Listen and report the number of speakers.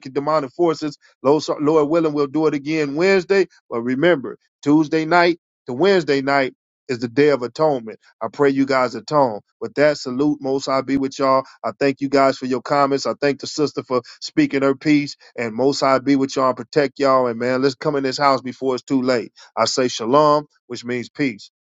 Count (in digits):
1